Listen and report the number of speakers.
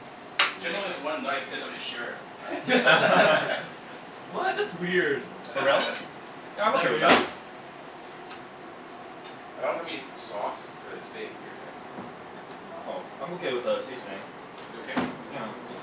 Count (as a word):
three